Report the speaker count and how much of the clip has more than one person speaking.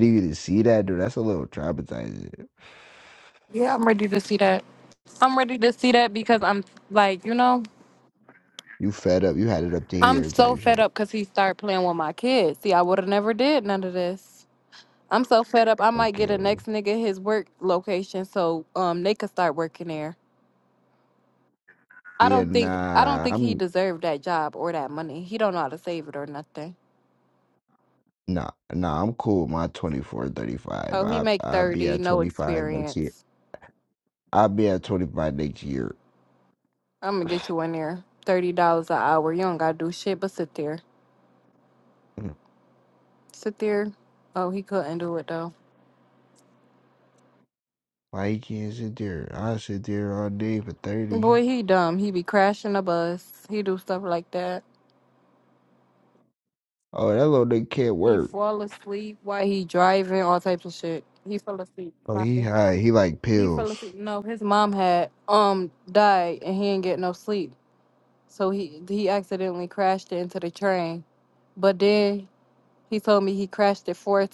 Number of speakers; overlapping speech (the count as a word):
two, about 8%